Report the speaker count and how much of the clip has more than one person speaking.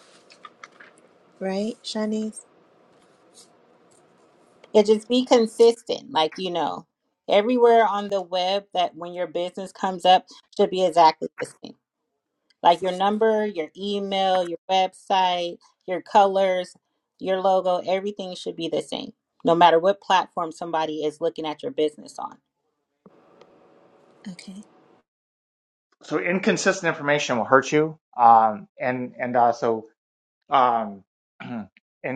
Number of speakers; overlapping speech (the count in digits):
3, no overlap